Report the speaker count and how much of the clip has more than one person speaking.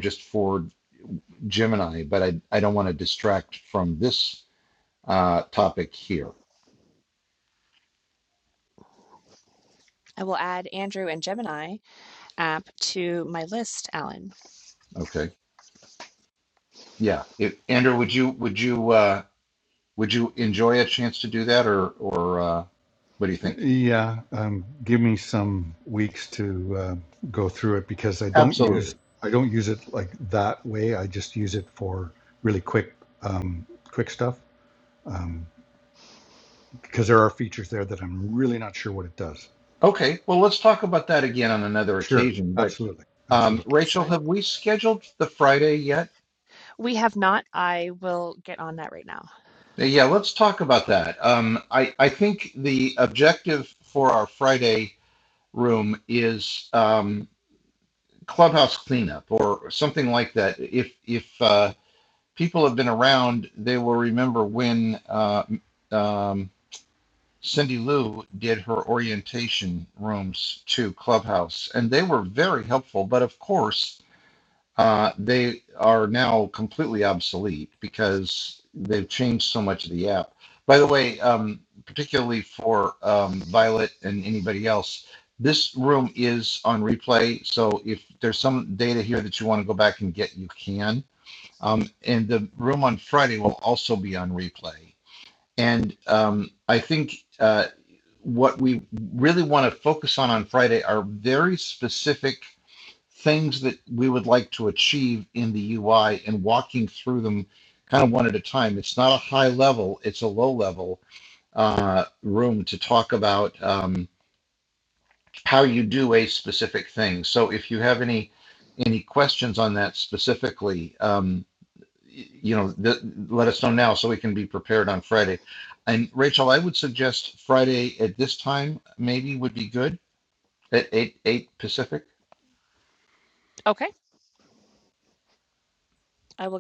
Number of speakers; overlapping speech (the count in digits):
3, about 2%